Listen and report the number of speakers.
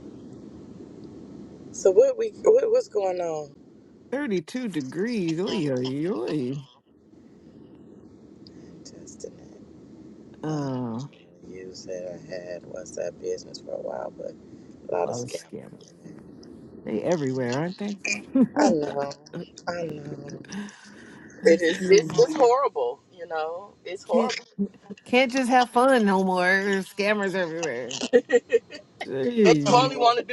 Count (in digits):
2